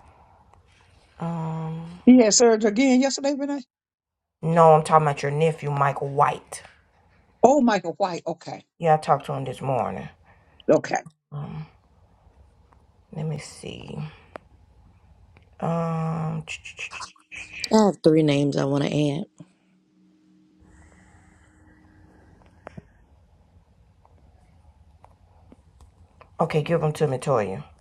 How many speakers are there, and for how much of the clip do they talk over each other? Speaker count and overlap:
3, no overlap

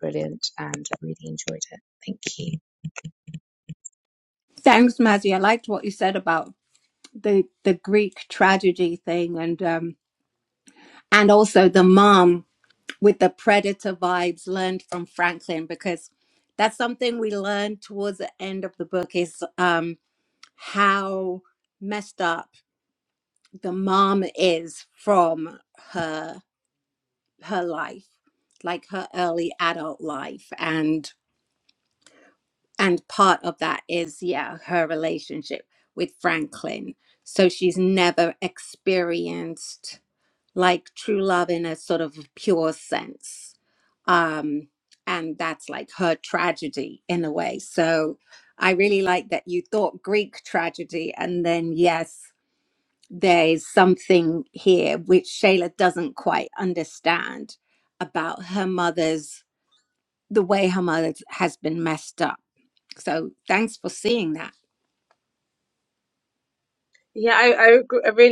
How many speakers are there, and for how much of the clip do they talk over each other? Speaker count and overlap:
3, no overlap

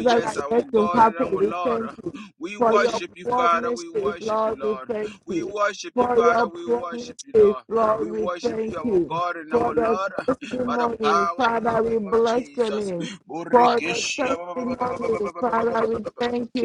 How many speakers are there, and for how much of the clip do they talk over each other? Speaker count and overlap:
2, about 62%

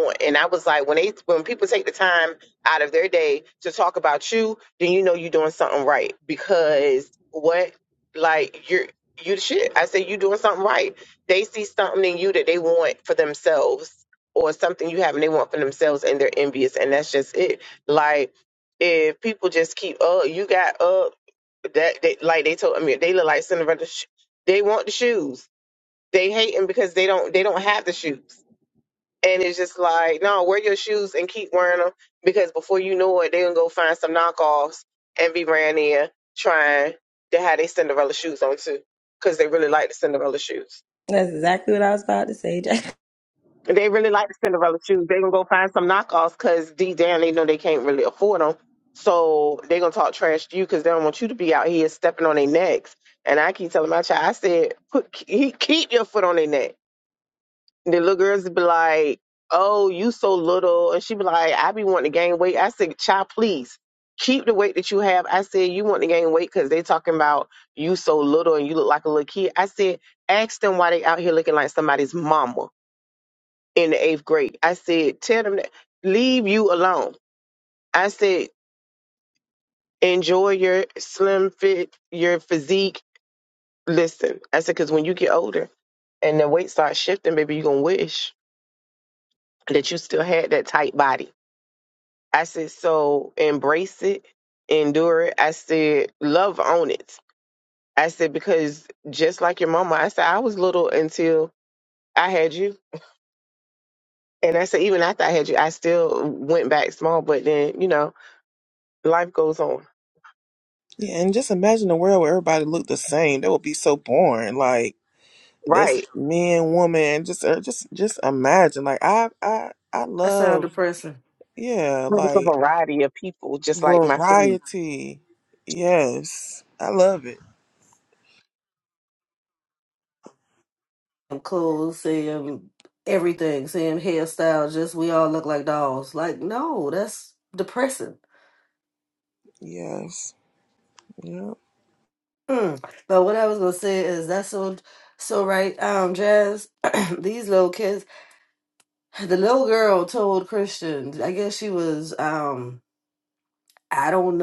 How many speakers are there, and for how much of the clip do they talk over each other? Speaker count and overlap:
4, about 1%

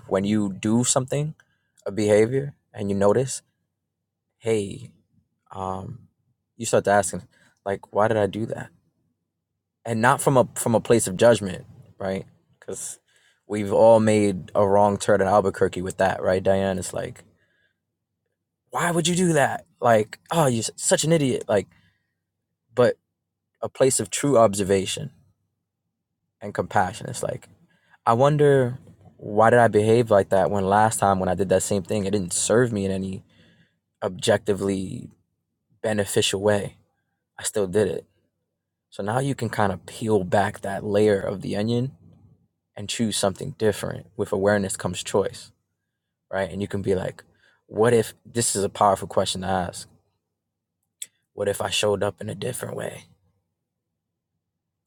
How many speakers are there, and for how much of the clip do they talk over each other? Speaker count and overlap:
1, no overlap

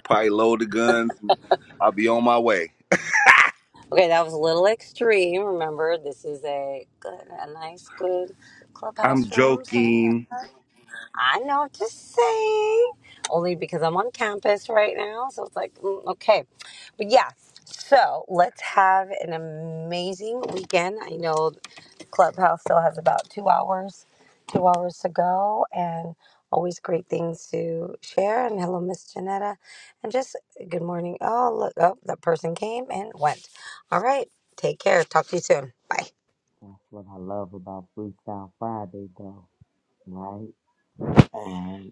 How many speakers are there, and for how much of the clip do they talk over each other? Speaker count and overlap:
3, about 3%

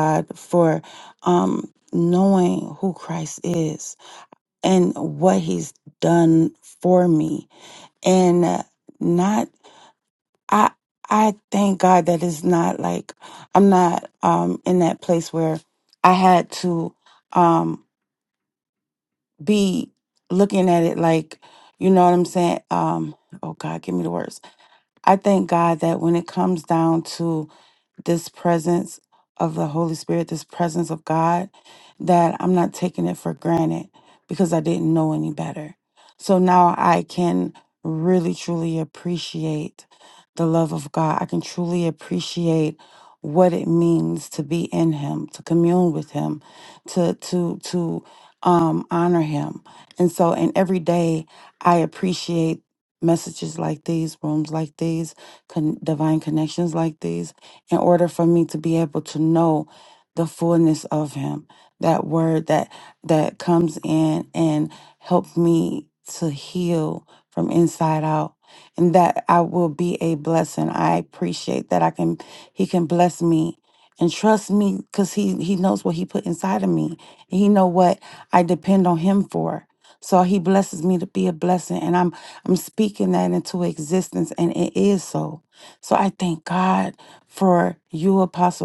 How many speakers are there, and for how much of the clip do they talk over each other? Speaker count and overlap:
1, no overlap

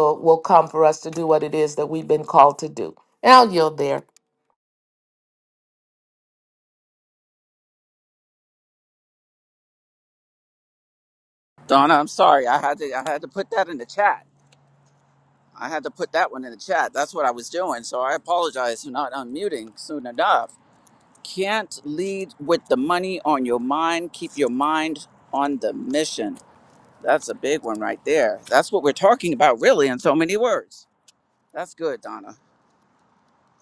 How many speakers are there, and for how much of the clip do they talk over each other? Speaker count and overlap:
2, no overlap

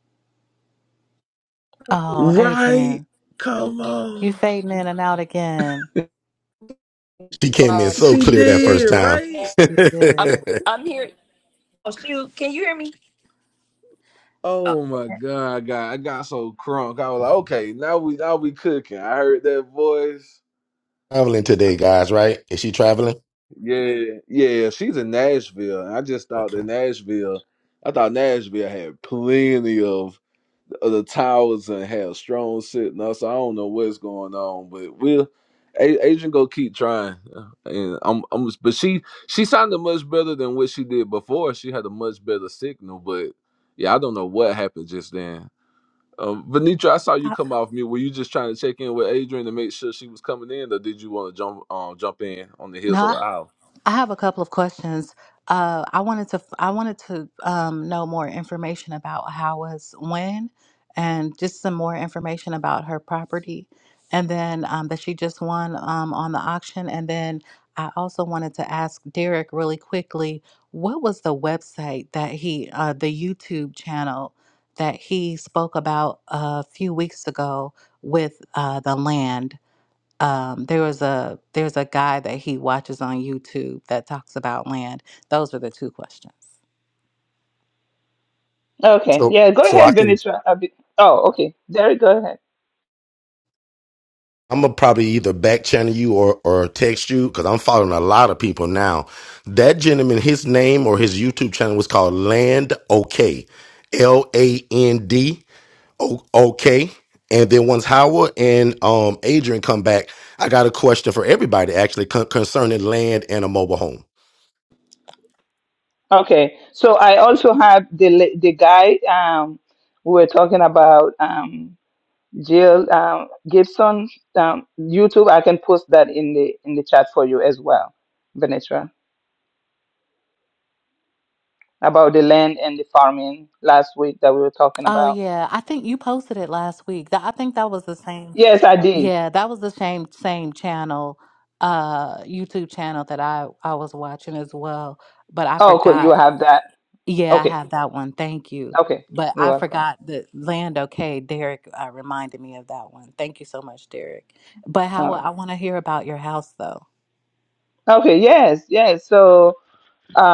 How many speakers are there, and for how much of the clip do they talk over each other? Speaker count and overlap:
5, about 4%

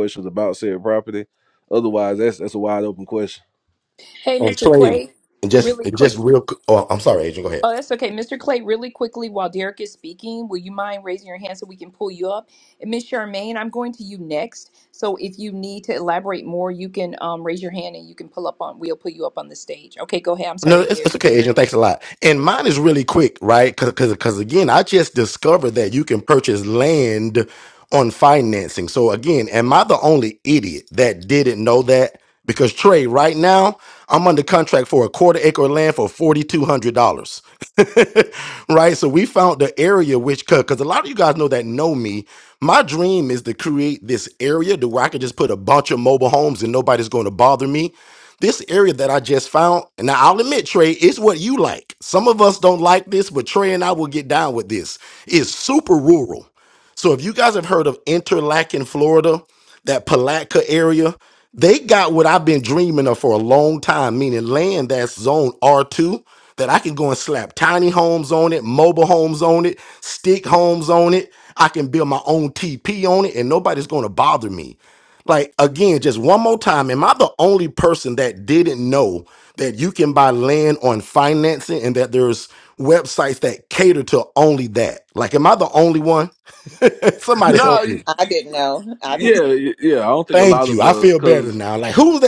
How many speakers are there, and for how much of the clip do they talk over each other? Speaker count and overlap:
4, about 4%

